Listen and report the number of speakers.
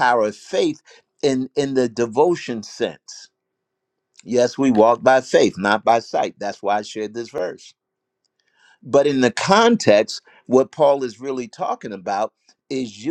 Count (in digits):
1